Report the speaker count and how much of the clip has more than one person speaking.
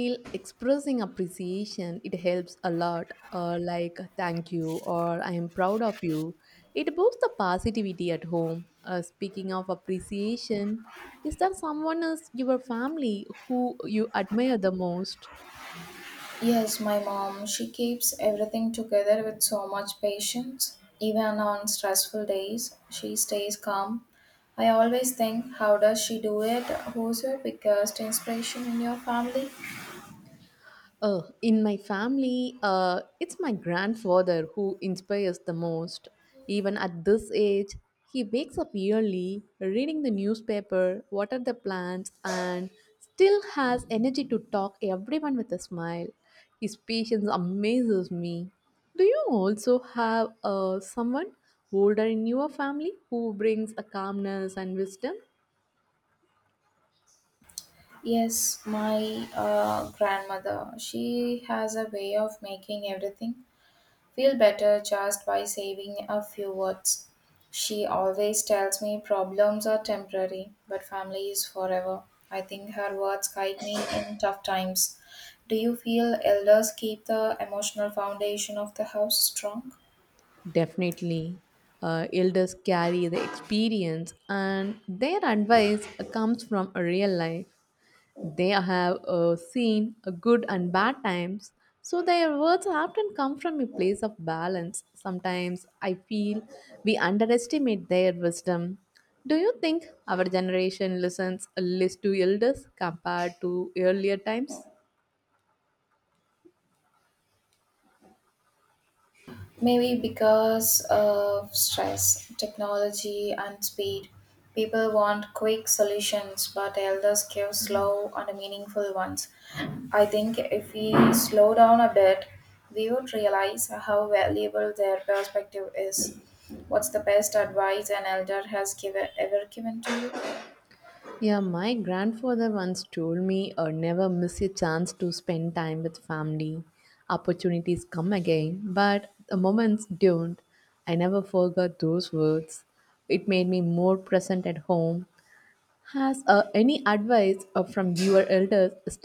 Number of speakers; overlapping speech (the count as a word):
two, no overlap